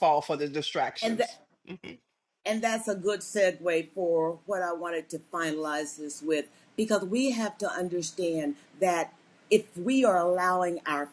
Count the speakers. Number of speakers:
two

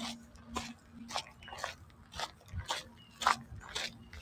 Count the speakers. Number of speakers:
zero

